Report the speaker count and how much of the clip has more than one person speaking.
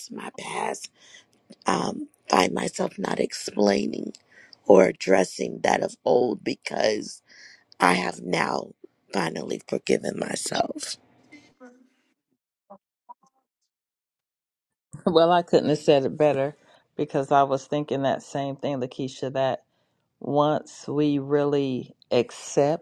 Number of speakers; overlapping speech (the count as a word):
two, no overlap